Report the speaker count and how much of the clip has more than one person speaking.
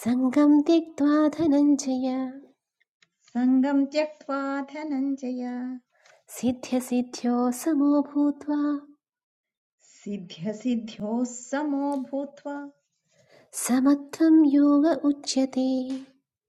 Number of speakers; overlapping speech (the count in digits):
2, no overlap